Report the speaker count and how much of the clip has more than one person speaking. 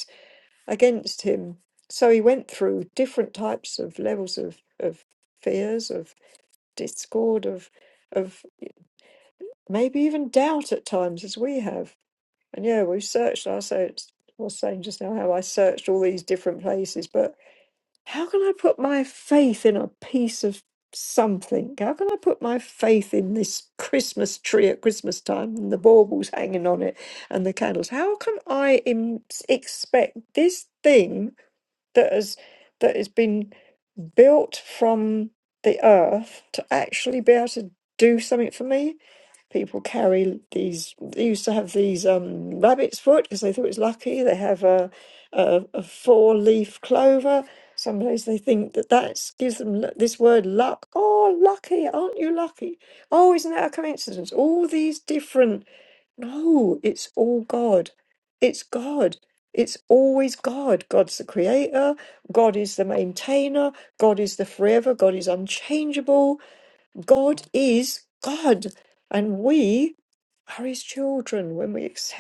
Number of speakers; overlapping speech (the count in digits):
1, no overlap